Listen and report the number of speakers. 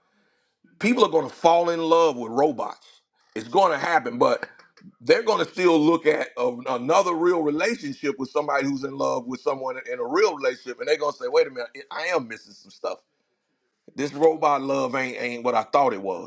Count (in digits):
1